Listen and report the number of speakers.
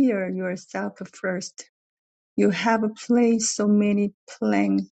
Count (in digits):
1